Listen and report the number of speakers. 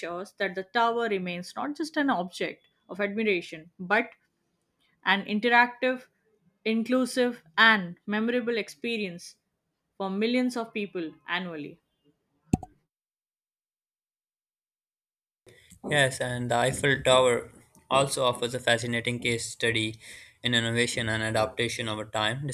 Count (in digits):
2